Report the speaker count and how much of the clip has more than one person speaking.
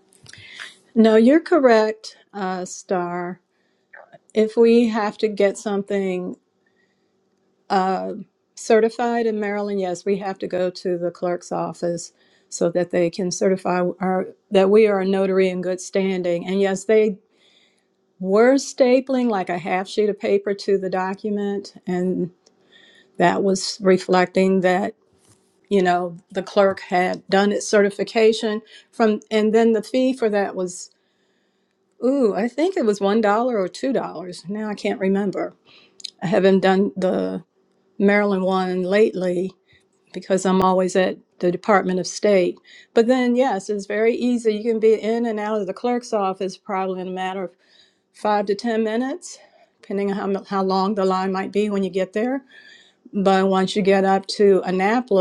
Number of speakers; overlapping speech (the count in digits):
1, no overlap